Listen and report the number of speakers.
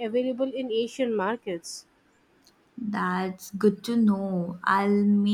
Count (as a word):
two